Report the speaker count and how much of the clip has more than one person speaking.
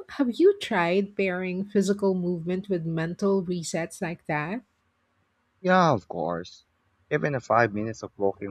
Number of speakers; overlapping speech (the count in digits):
2, no overlap